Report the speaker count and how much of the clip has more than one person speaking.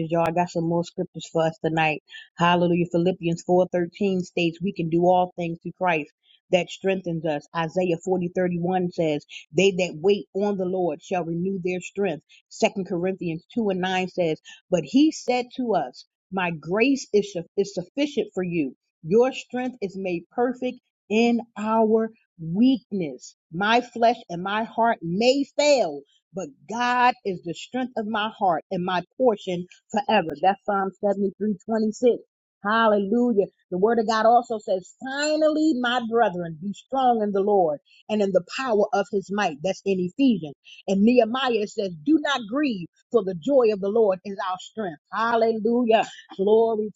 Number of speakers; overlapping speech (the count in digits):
1, no overlap